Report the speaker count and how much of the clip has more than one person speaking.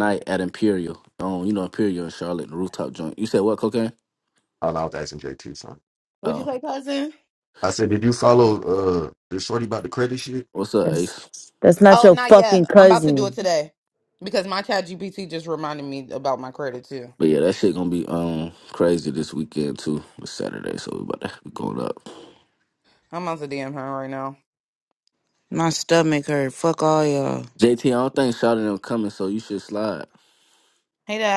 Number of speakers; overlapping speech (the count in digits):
4, about 6%